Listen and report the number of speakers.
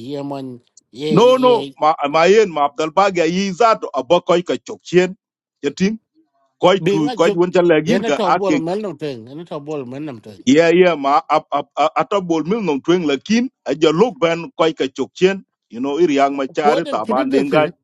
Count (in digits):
2